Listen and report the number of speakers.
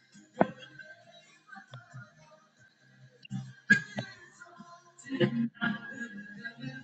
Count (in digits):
0